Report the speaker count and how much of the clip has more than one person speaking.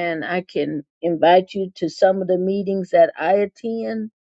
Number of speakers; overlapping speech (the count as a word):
one, no overlap